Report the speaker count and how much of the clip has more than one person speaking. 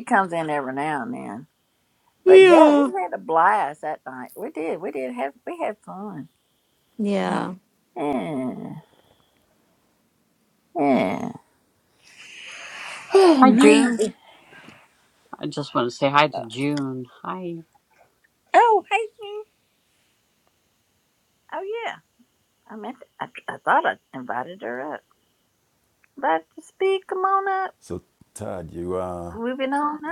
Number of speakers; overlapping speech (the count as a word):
four, about 4%